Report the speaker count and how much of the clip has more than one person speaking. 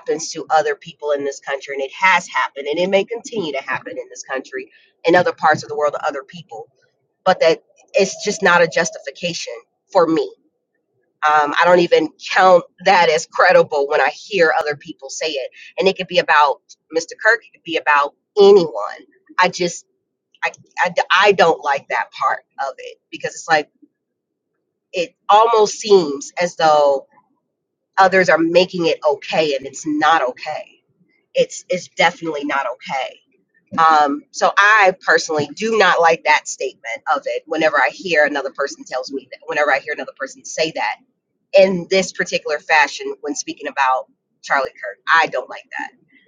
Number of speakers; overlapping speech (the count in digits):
1, no overlap